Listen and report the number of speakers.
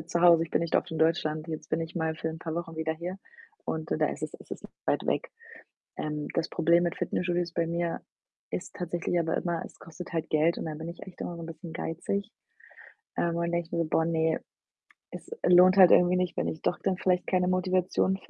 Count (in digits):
1